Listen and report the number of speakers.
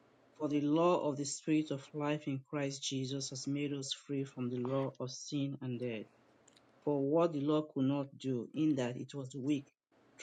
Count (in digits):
1